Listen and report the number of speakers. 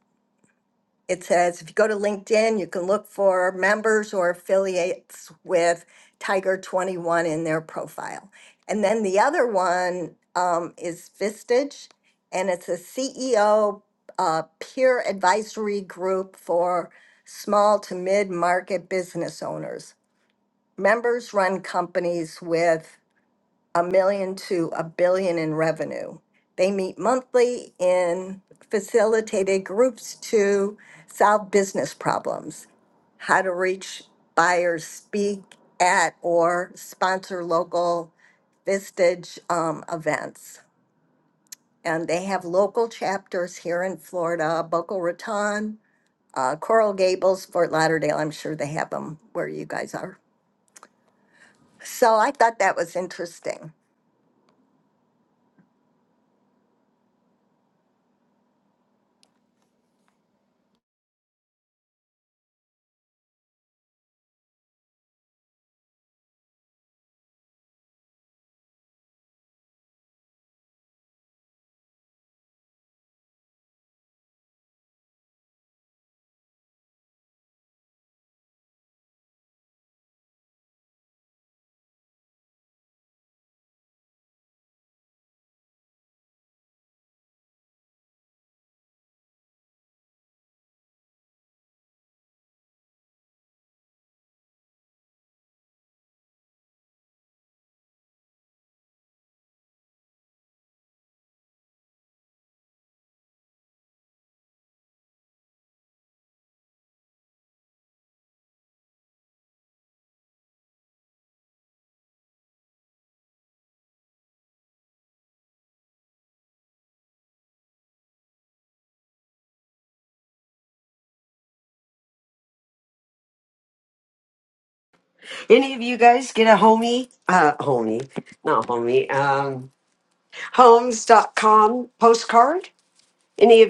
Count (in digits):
2